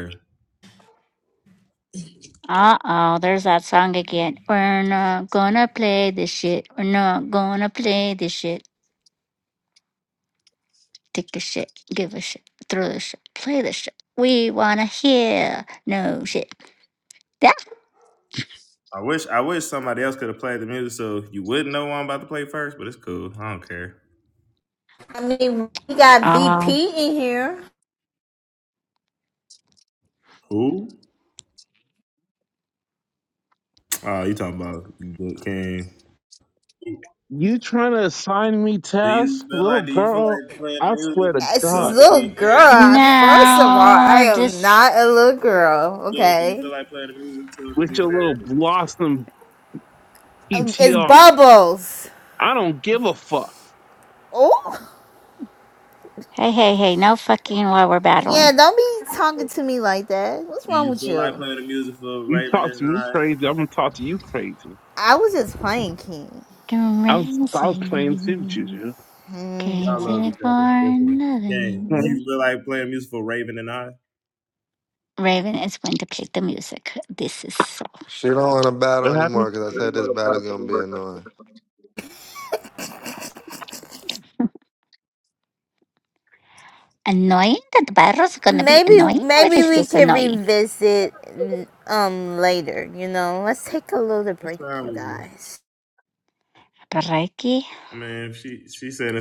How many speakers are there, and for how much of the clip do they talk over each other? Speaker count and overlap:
five, about 15%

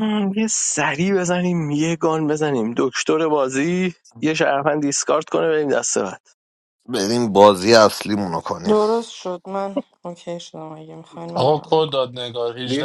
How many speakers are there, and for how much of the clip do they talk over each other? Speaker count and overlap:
four, about 7%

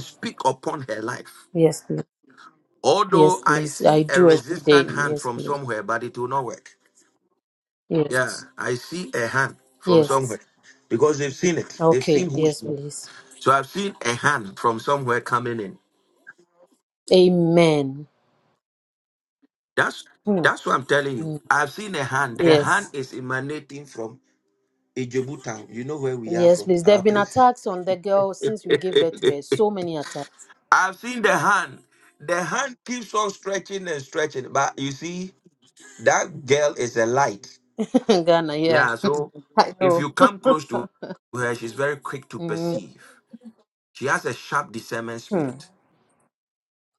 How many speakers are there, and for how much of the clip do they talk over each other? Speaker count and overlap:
two, about 14%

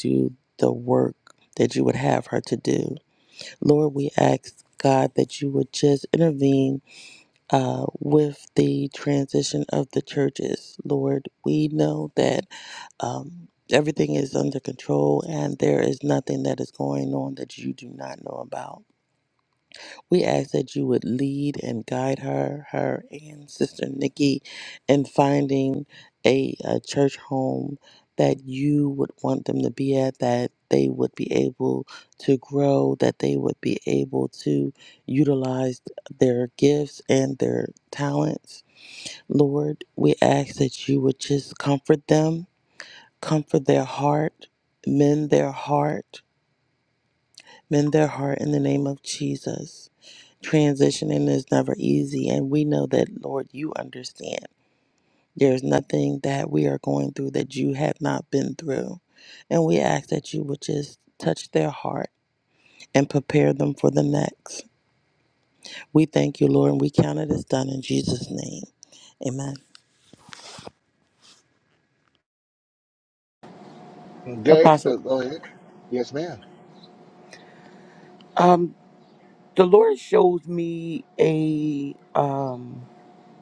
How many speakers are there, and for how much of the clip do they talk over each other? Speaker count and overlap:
three, about 1%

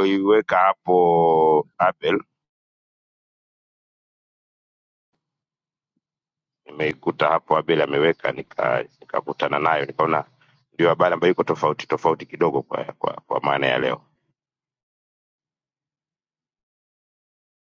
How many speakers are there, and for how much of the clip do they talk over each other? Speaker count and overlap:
one, no overlap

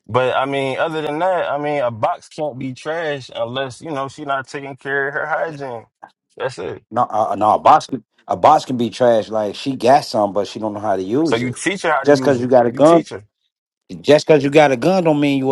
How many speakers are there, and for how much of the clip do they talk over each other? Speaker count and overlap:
two, about 8%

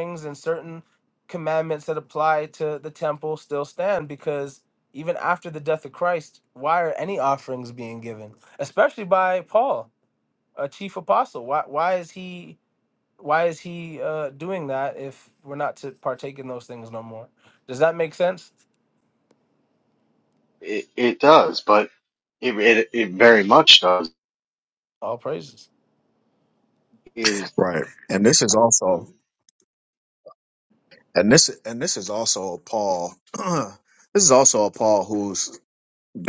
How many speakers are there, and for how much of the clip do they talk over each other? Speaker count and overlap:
three, under 1%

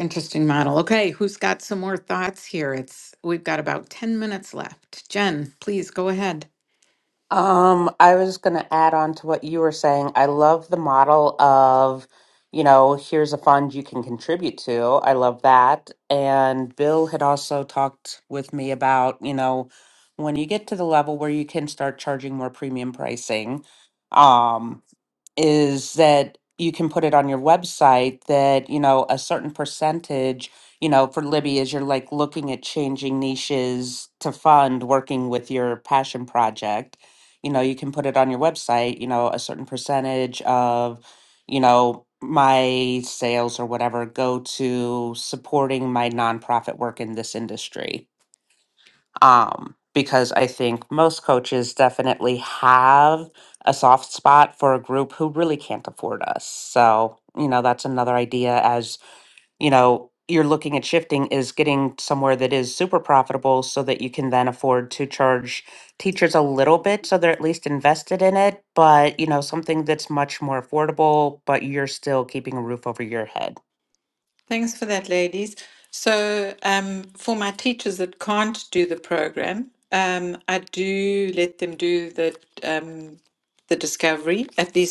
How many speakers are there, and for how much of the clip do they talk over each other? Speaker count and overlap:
three, no overlap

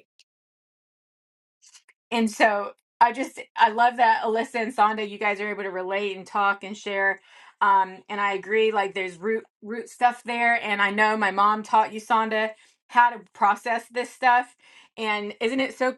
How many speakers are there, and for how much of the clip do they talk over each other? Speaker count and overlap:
one, no overlap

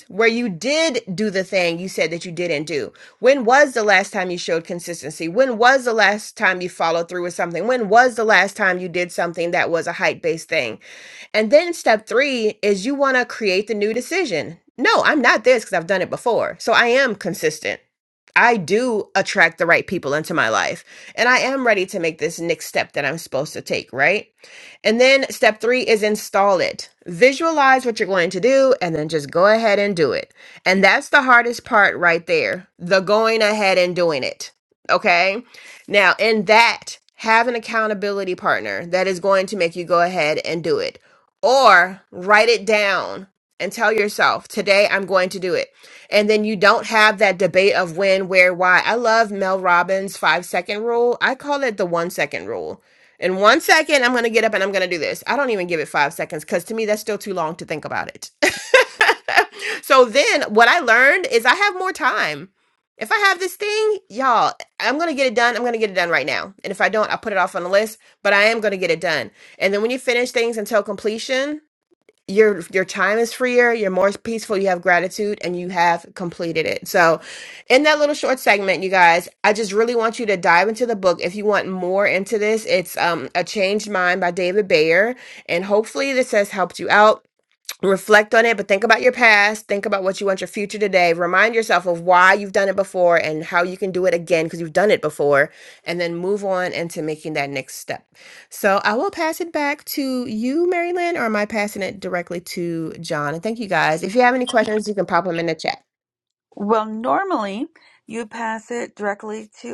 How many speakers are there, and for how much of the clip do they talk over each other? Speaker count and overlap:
two, no overlap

